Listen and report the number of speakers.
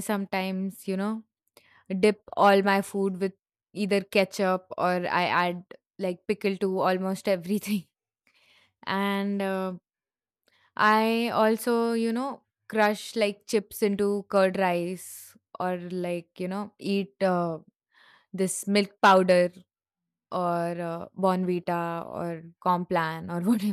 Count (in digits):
1